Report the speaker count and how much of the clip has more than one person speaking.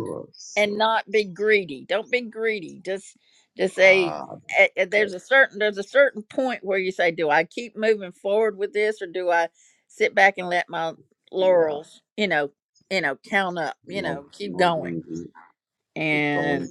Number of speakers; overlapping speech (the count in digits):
2, about 18%